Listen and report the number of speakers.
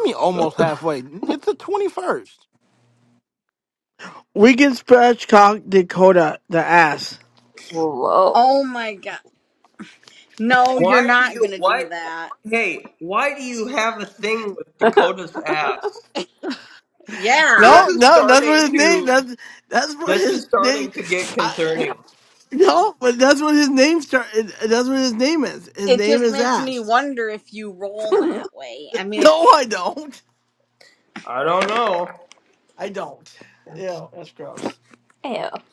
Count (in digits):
5